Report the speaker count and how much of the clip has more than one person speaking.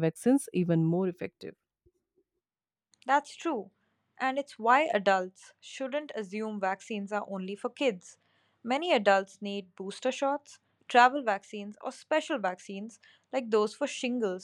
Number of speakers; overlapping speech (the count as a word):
two, no overlap